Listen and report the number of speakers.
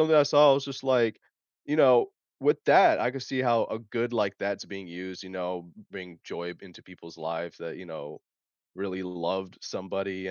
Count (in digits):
1